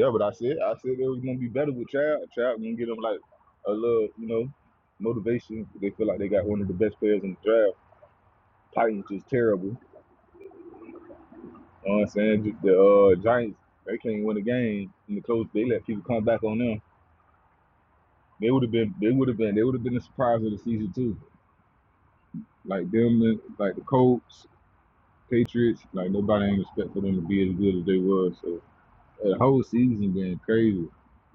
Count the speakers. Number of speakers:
1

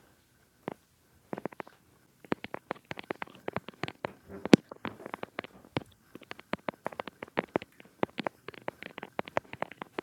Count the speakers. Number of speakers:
0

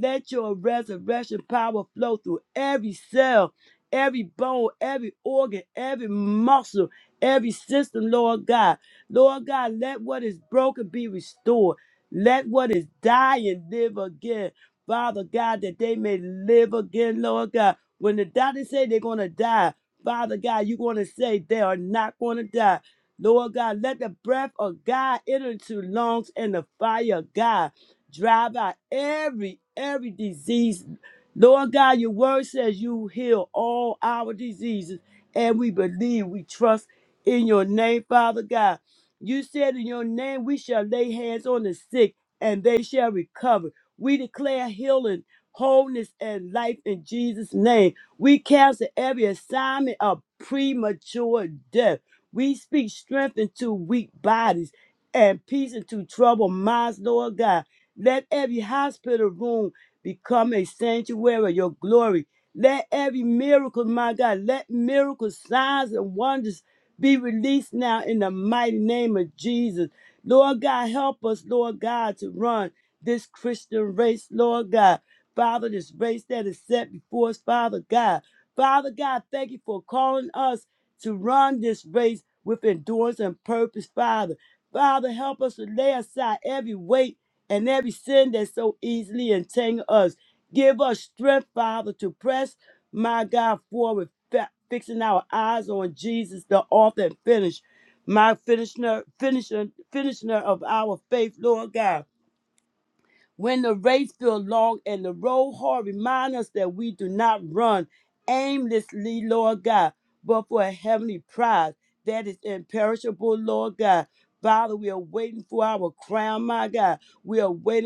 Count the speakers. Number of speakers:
1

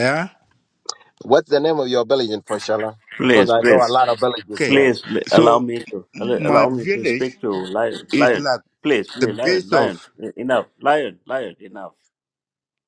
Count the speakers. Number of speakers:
3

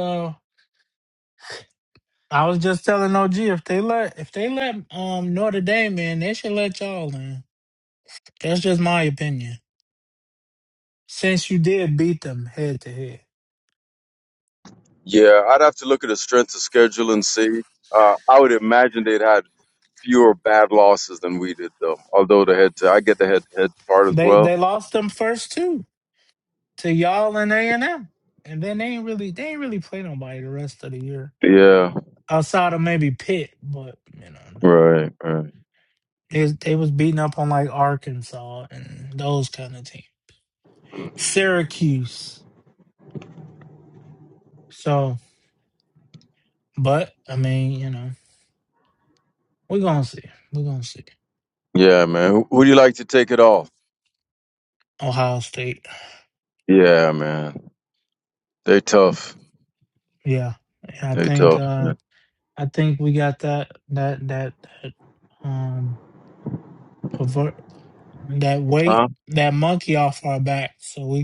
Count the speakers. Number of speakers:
2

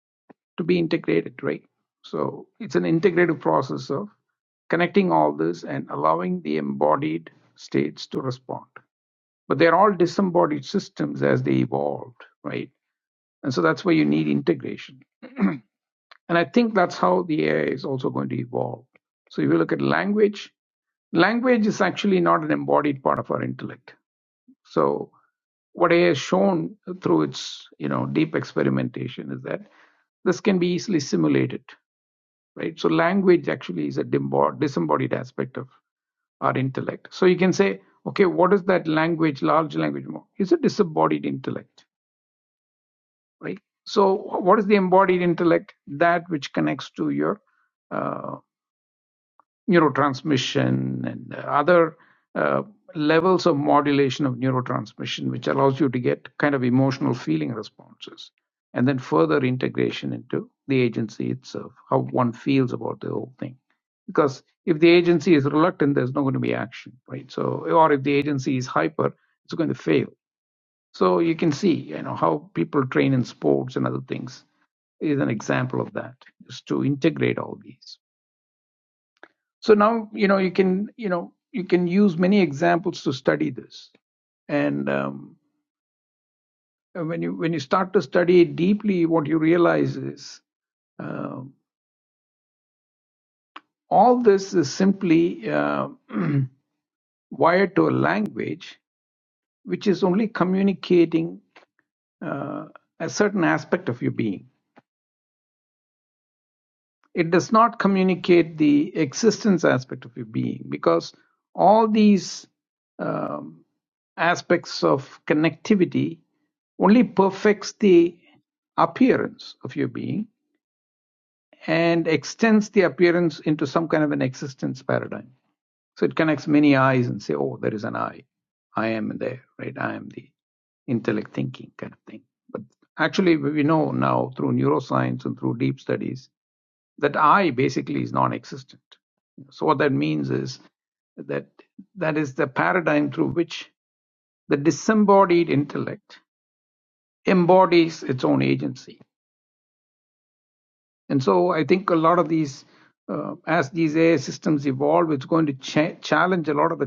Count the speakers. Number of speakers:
1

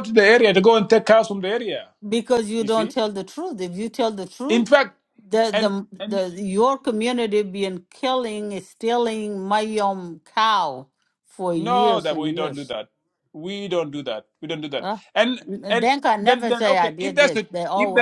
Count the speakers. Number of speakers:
2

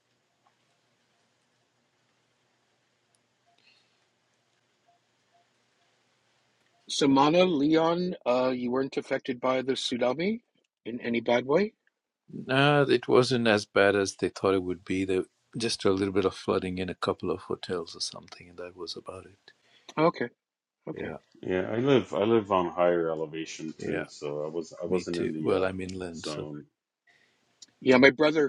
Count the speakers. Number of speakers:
3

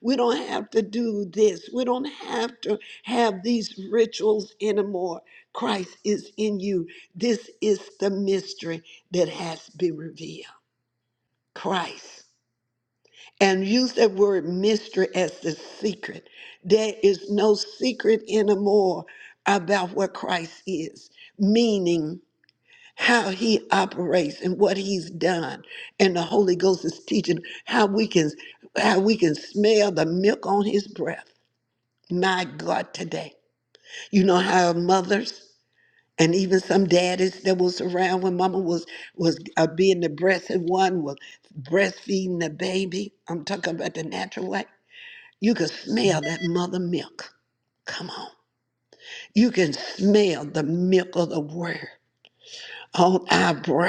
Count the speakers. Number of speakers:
1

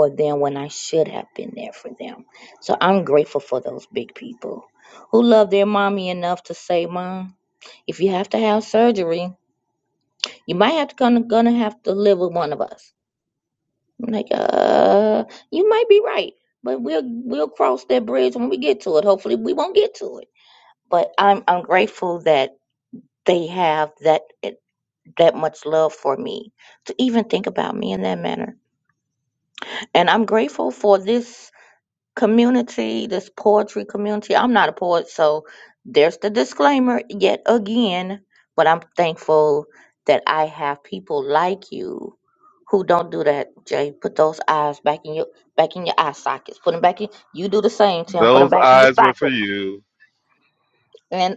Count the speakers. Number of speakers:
2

